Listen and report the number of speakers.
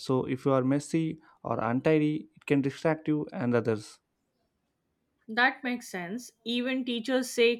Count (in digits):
2